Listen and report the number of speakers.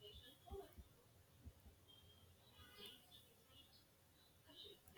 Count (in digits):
0